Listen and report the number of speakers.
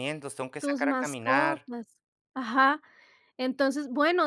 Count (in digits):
2